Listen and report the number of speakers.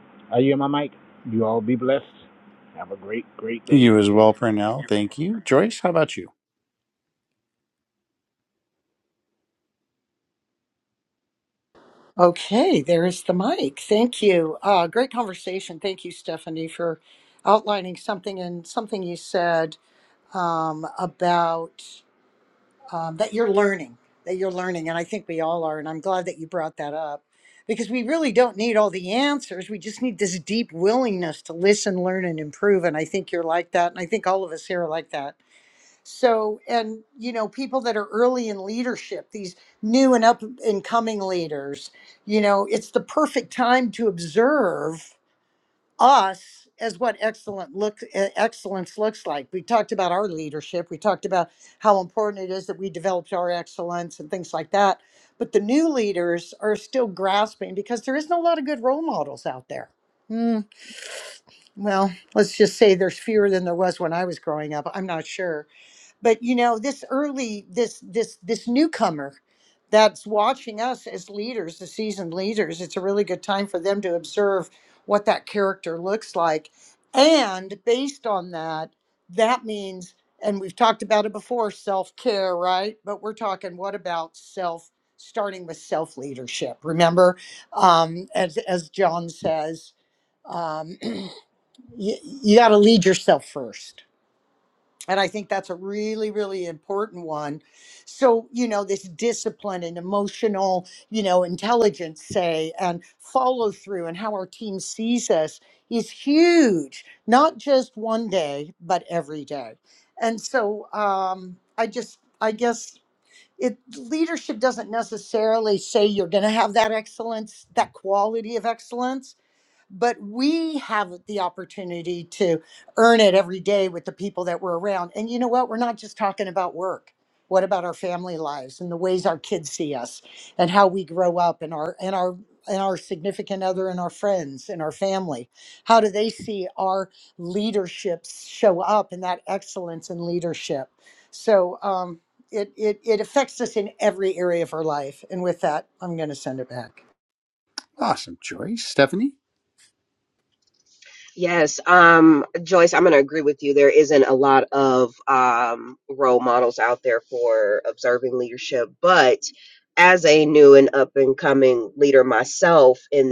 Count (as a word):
four